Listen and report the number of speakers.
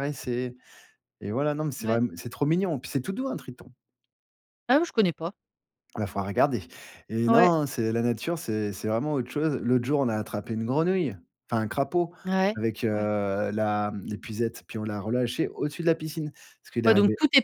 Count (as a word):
two